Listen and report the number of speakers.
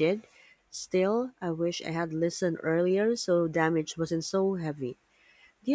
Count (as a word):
one